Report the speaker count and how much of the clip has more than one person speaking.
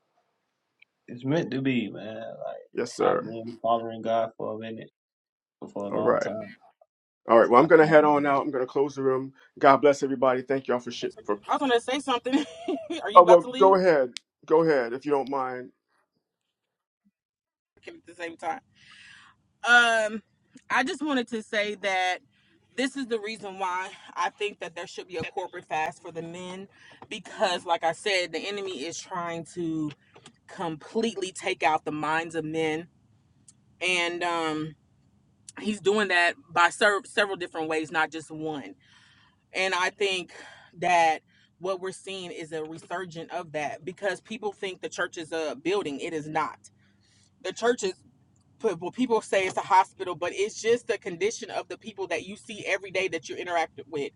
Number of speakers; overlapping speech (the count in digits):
3, about 4%